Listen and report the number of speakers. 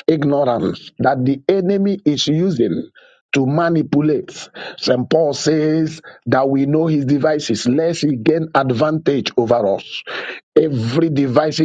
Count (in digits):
1